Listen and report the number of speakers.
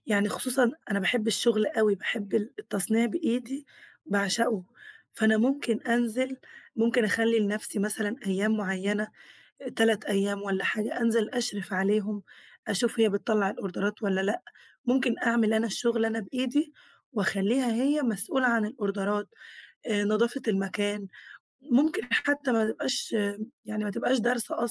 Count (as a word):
one